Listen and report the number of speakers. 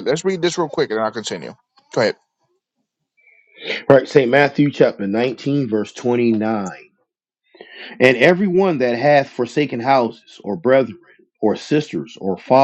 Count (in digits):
2